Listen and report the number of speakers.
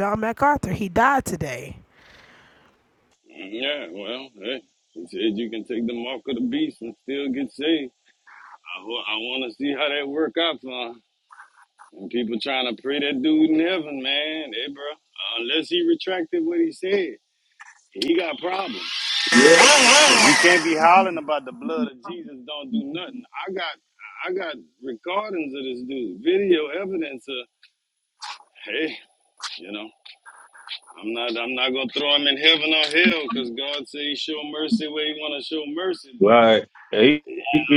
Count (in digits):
3